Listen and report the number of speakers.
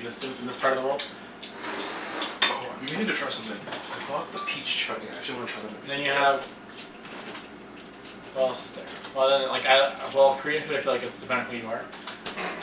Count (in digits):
2